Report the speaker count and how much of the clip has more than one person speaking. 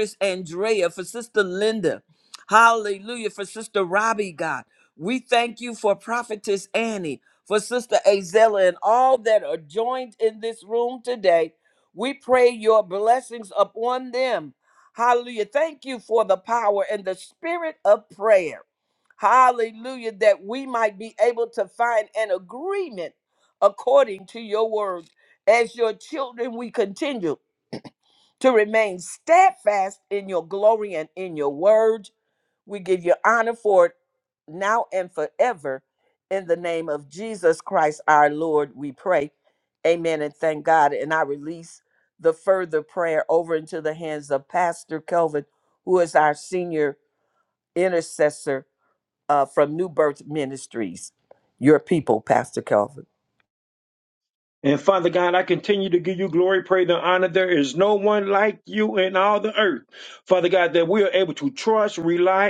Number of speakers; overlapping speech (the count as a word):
two, no overlap